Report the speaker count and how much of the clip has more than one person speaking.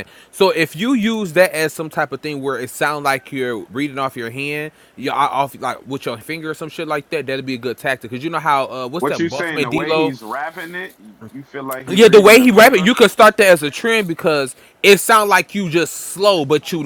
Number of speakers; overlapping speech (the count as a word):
two, about 13%